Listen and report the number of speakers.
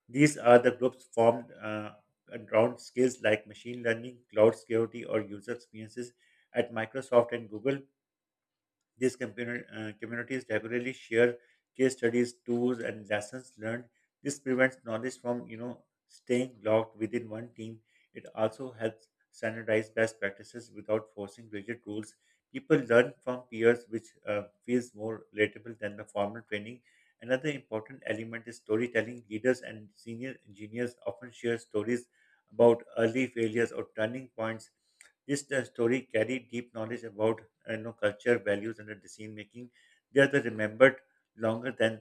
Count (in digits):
1